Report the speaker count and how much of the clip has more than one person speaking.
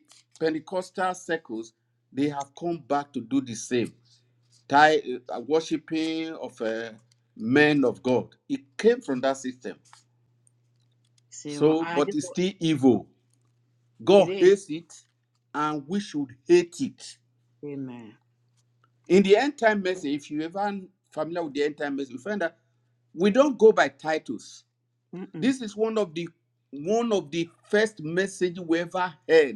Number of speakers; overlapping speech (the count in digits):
2, about 4%